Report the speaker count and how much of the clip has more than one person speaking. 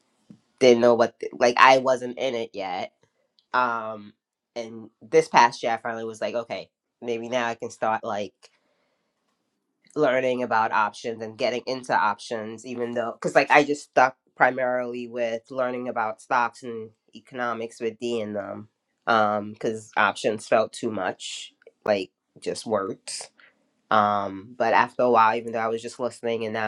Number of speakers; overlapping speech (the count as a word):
one, no overlap